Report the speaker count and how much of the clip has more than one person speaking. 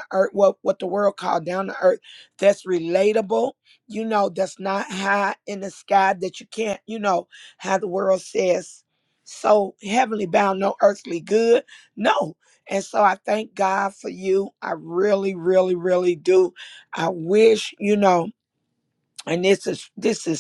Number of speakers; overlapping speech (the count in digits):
1, no overlap